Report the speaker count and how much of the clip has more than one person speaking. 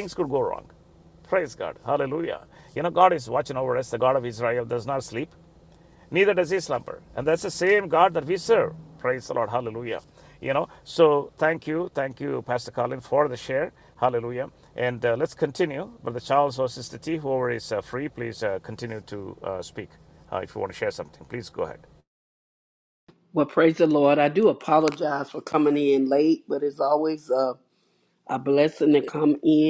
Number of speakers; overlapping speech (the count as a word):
two, no overlap